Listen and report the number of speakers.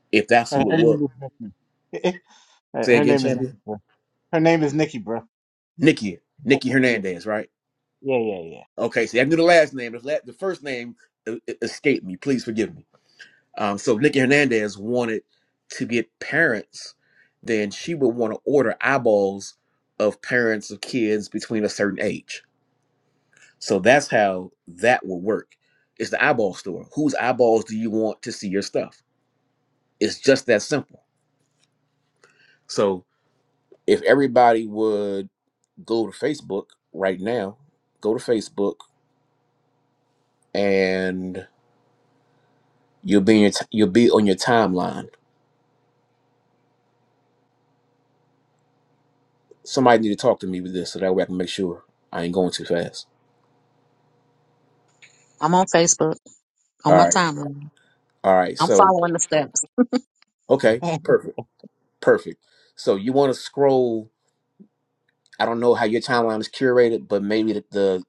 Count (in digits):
3